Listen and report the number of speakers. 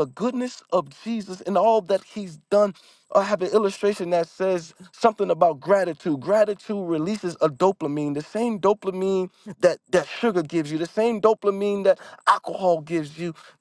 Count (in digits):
1